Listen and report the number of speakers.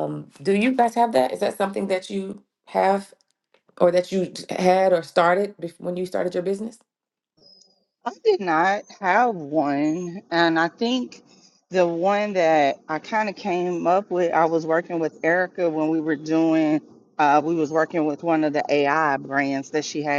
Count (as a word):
two